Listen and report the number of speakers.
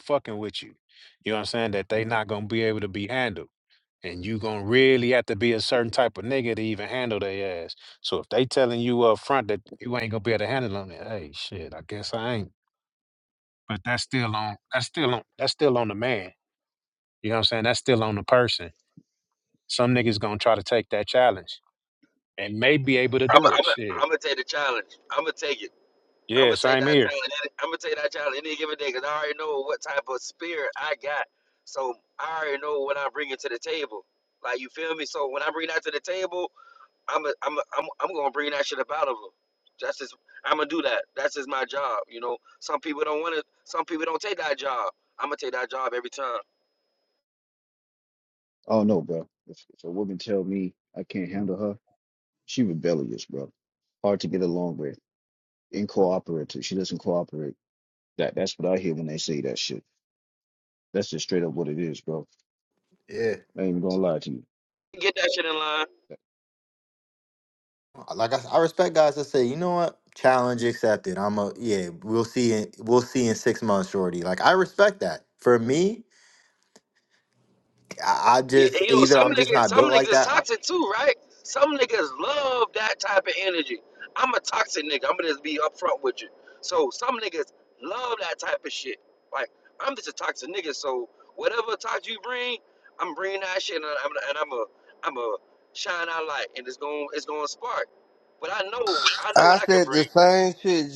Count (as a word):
five